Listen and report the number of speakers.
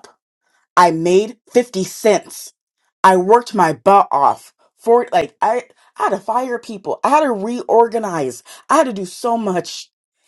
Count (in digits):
1